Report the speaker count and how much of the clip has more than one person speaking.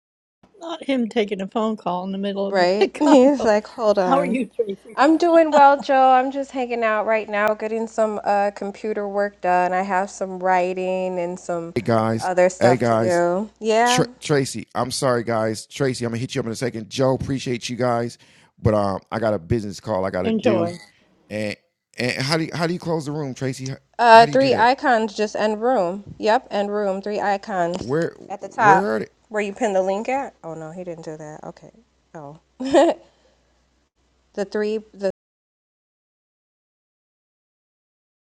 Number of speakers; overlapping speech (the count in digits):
3, about 10%